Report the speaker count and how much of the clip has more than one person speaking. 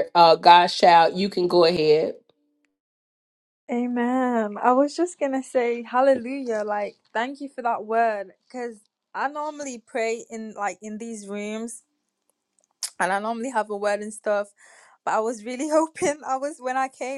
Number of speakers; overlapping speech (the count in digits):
2, no overlap